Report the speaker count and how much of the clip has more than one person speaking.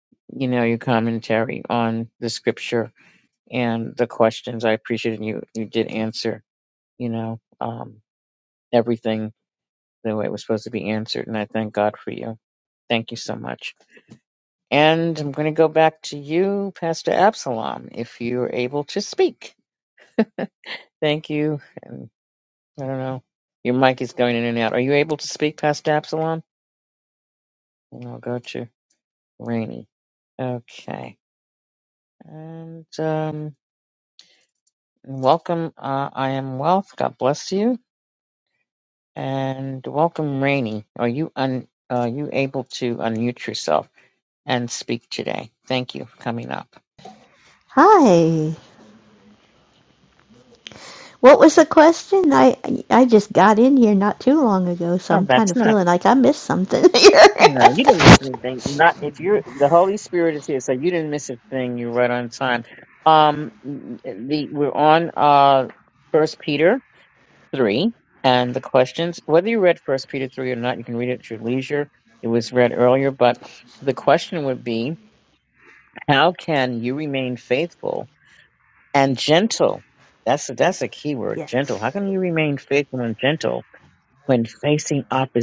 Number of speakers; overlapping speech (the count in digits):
2, about 1%